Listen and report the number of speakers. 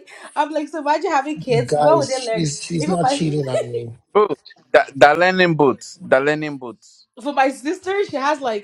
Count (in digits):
3